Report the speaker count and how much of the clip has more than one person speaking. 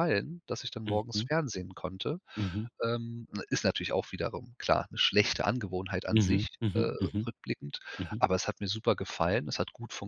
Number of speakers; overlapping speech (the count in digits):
2, about 14%